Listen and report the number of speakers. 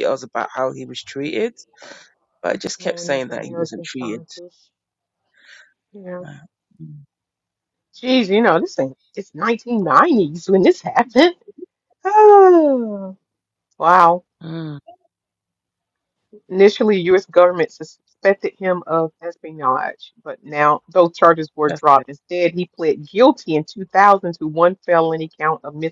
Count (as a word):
two